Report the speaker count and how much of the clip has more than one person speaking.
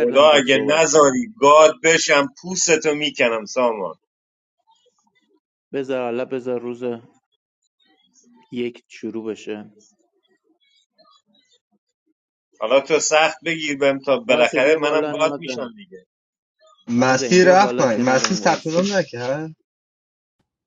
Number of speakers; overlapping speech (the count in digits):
3, about 21%